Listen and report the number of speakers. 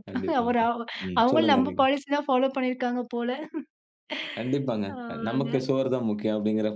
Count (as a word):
two